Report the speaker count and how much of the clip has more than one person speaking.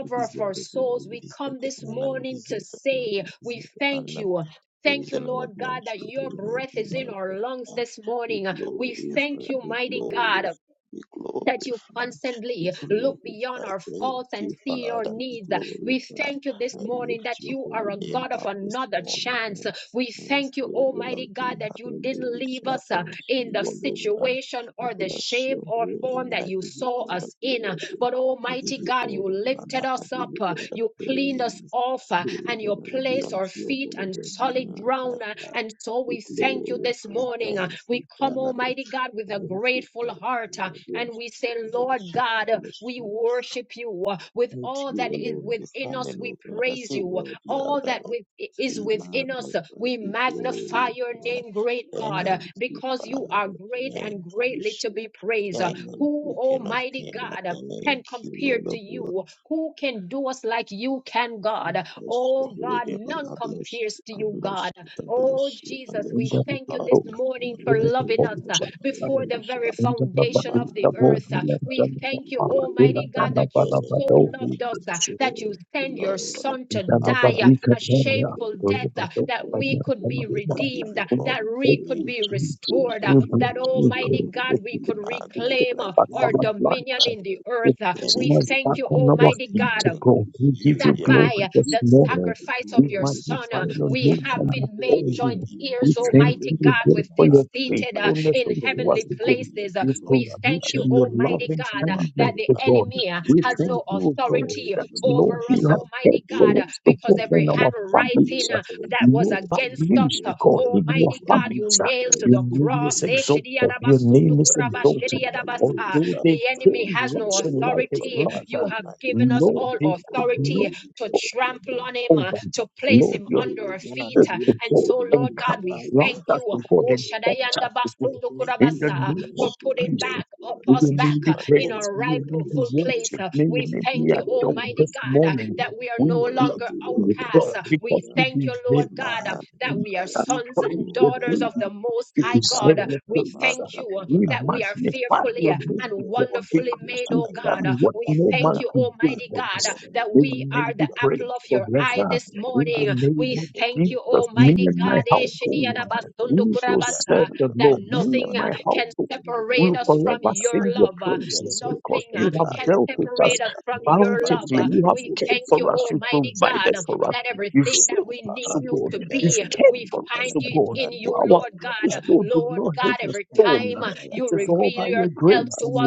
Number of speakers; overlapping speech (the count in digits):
3, about 89%